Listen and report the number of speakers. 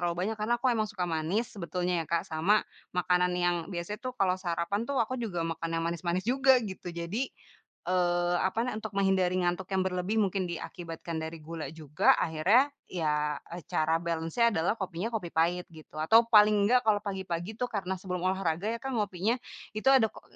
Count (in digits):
1